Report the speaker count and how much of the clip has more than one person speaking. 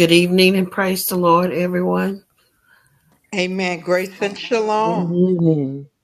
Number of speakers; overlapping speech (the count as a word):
three, about 4%